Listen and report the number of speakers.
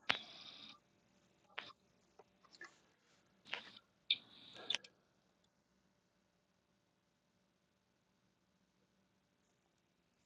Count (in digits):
0